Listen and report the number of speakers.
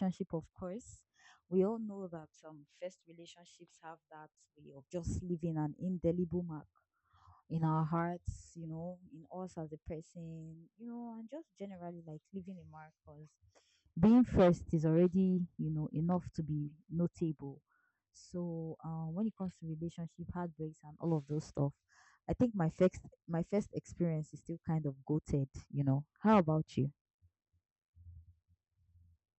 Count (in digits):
1